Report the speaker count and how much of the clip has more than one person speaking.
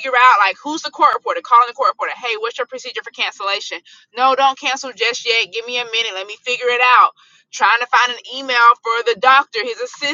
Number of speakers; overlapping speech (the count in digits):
1, no overlap